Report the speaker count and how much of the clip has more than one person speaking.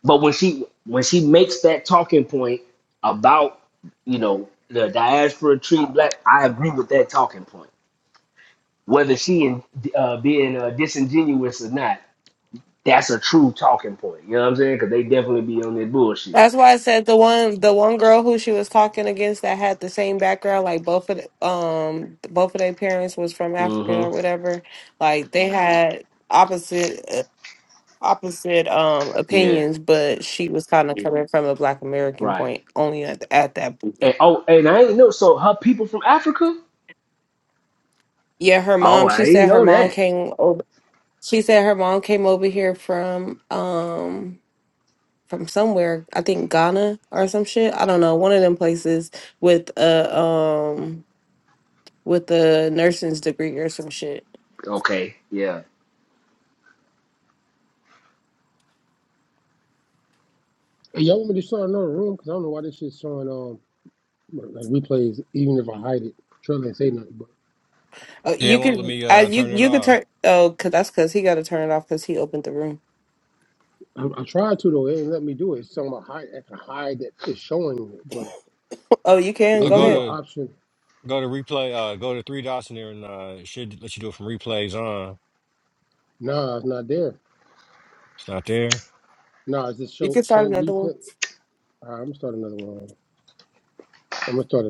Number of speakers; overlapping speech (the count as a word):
four, about 6%